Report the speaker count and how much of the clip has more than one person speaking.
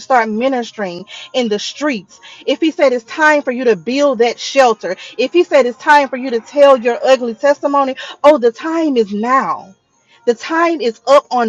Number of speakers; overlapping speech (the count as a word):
one, no overlap